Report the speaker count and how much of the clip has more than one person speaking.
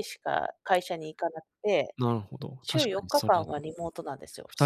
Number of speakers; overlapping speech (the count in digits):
2, about 21%